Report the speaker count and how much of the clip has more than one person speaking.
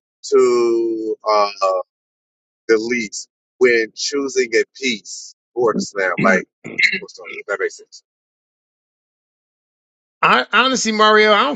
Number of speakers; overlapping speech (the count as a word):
two, no overlap